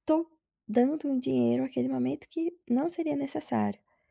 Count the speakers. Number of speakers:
1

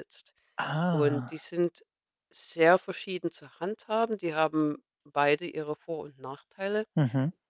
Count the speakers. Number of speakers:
2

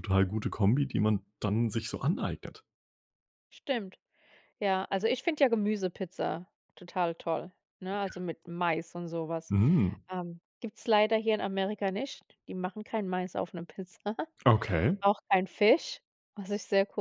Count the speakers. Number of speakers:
2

